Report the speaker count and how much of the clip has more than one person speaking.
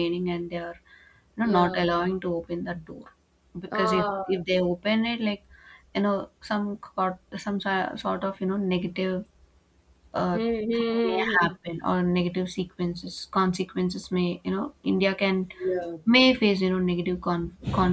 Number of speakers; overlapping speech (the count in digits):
2, about 12%